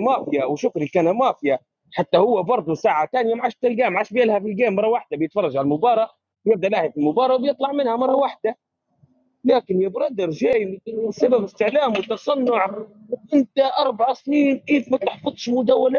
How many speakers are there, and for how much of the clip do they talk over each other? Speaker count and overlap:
one, no overlap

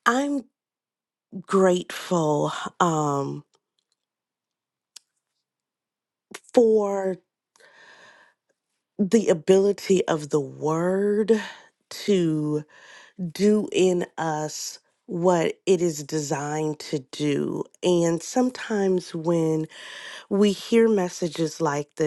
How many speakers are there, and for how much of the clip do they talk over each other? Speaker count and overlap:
one, no overlap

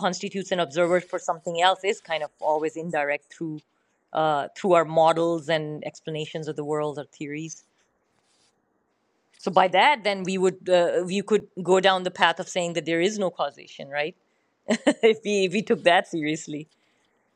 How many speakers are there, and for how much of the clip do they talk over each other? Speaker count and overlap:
one, no overlap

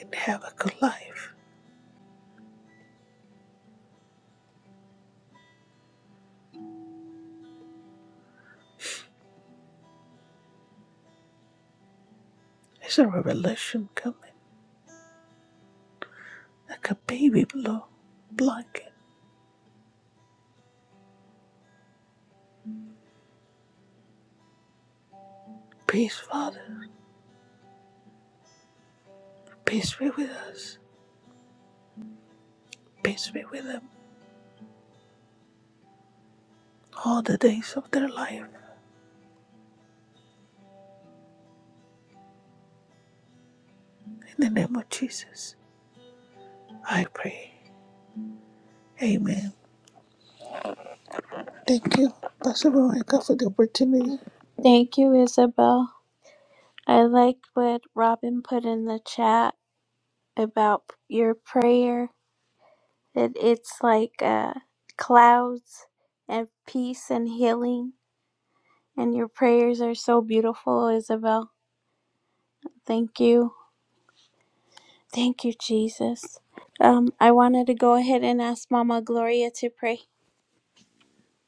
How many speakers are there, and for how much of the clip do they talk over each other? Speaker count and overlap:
two, no overlap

